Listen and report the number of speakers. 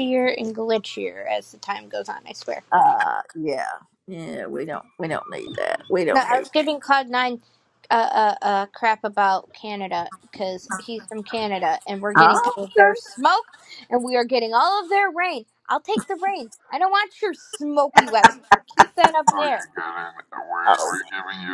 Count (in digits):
3